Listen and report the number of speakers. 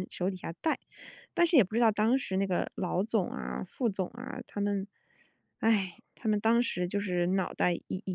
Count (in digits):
1